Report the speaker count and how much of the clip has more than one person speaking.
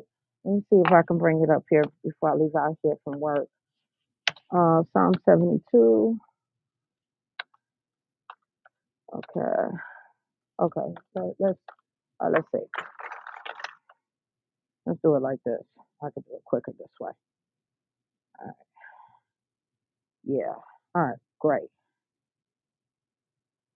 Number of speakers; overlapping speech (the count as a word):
one, no overlap